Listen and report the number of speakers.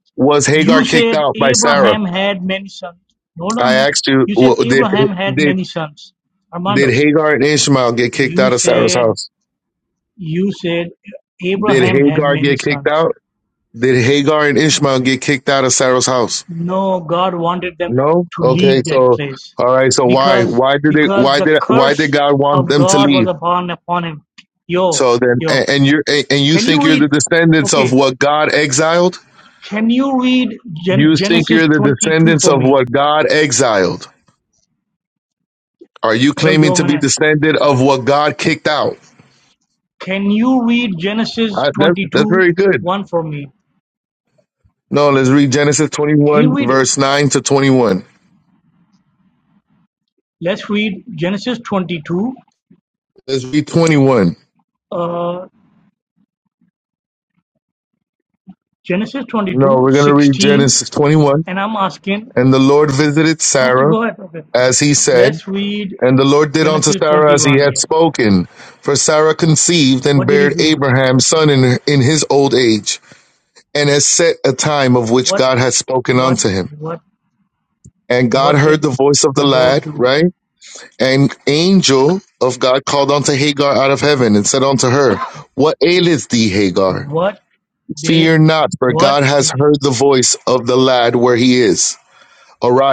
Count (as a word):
two